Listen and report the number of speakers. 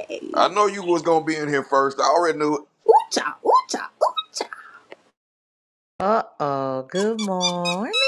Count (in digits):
3